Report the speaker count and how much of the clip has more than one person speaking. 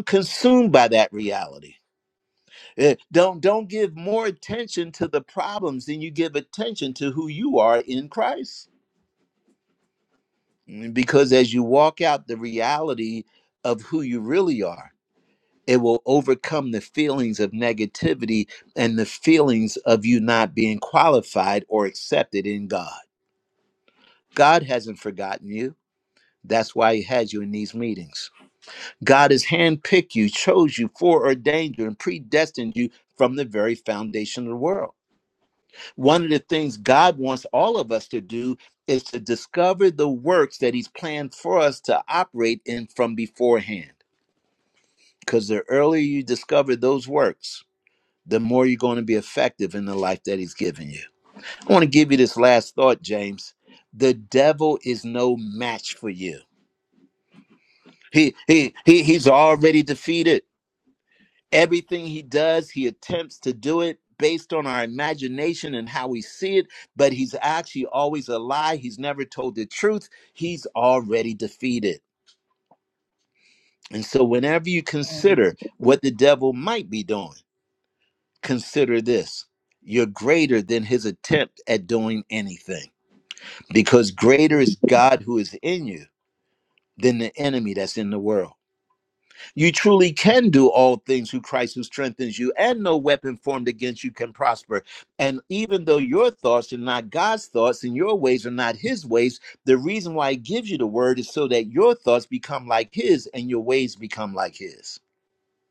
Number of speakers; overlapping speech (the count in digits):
1, no overlap